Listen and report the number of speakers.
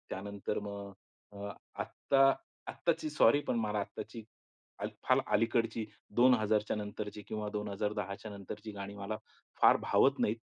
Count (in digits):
1